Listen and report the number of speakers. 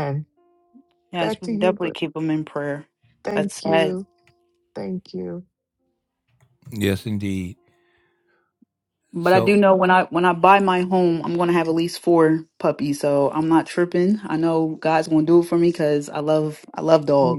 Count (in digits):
3